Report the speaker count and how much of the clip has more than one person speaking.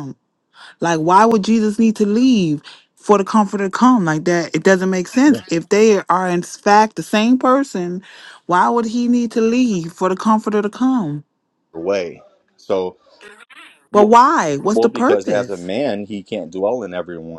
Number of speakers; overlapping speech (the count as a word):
two, about 6%